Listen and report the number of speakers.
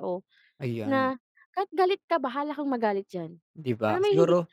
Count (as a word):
two